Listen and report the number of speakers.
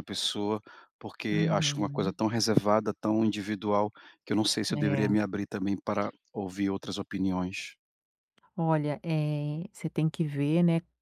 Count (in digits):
2